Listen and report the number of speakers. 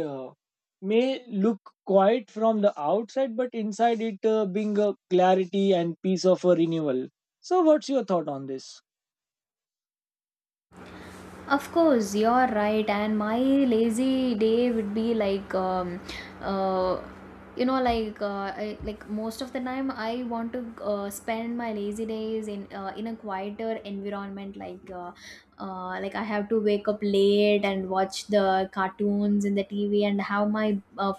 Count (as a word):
two